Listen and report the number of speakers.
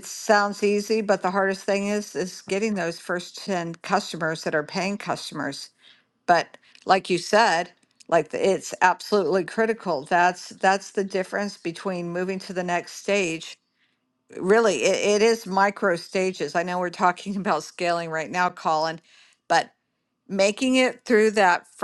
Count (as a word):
one